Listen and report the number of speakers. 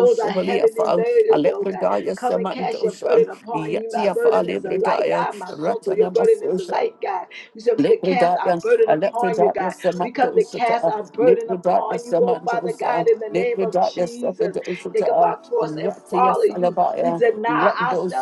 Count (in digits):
2